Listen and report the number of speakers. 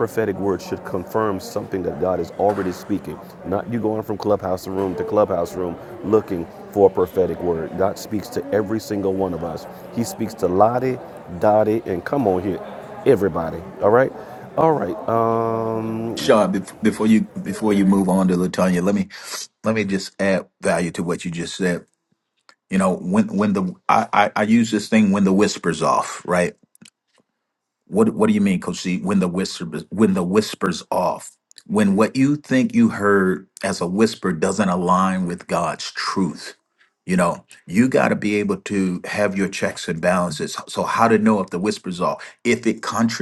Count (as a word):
two